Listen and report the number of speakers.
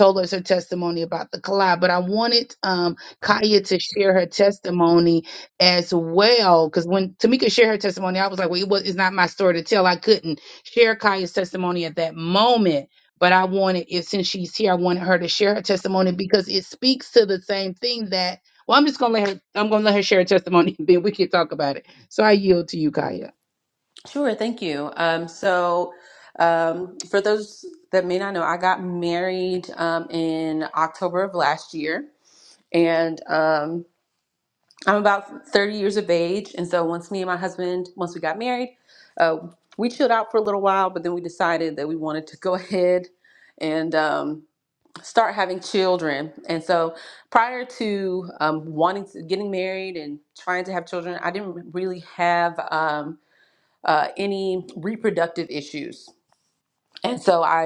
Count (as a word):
two